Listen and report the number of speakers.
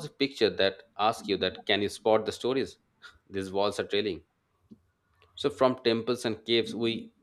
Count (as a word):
one